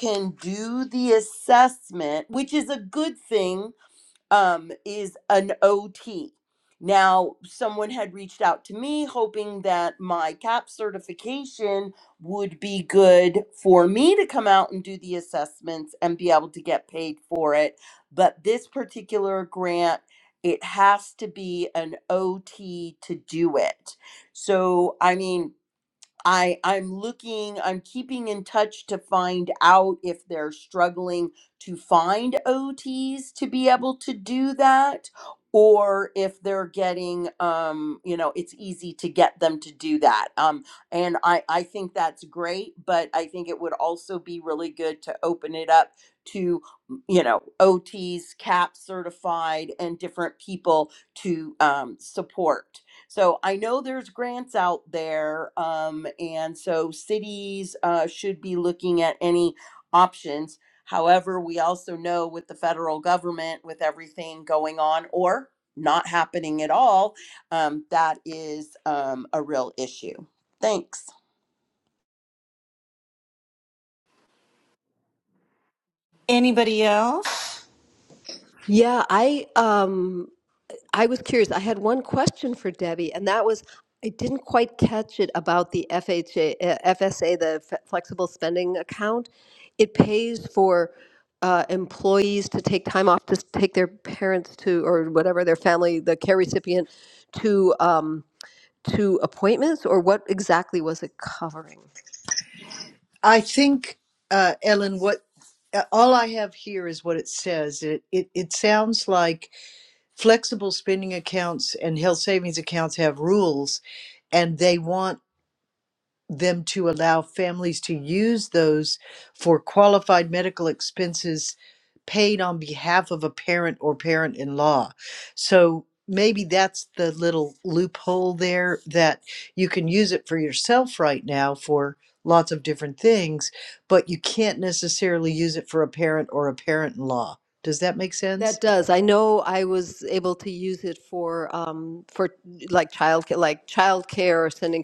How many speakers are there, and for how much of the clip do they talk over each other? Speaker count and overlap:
four, under 1%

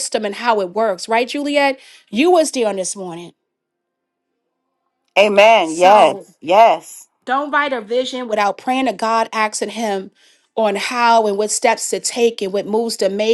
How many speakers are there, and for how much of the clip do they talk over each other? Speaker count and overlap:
two, about 3%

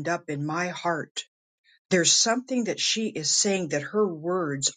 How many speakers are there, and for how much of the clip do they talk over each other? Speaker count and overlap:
one, no overlap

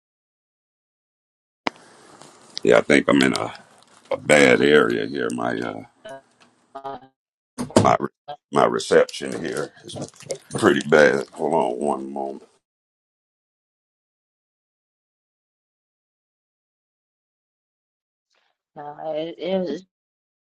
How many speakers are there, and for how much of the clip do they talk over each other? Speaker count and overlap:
two, about 1%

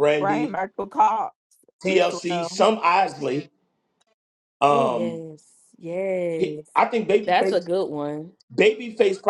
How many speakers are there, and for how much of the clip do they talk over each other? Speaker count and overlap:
three, about 22%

